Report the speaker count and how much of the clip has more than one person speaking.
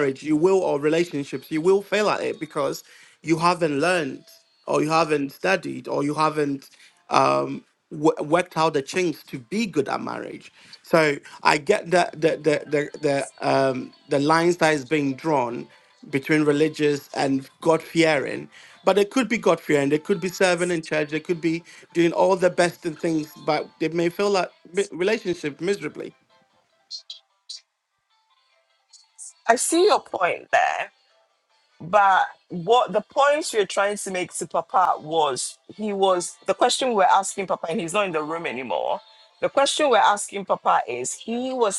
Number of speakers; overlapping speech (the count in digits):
2, no overlap